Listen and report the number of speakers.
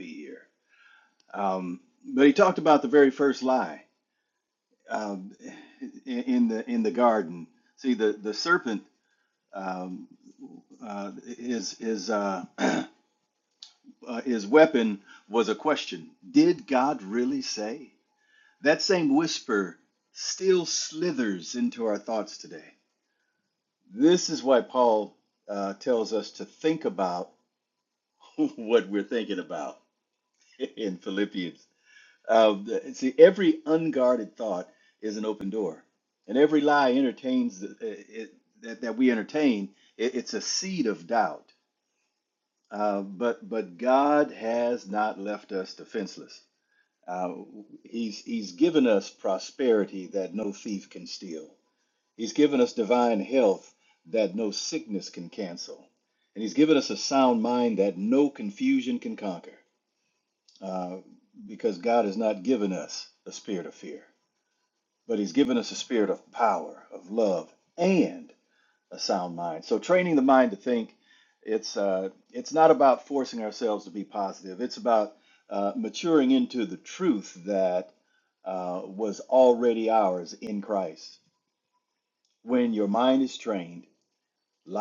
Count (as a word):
one